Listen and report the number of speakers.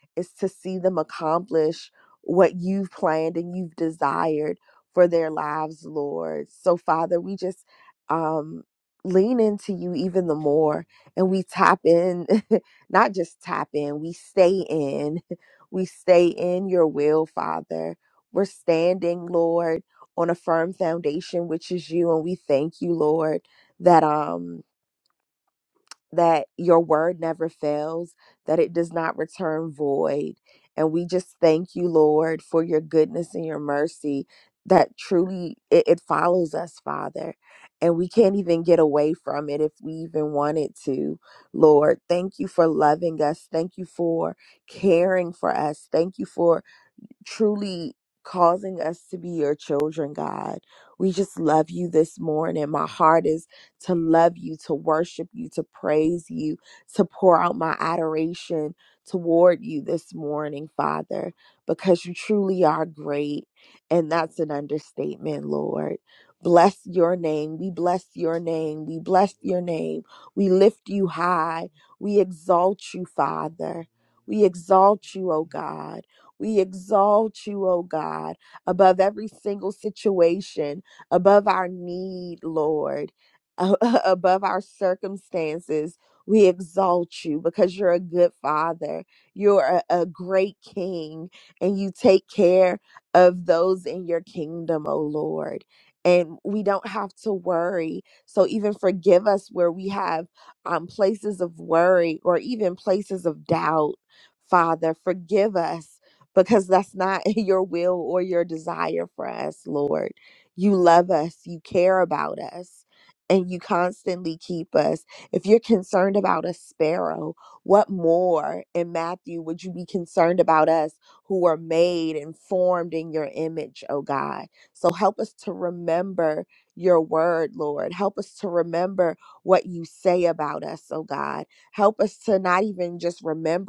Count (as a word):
one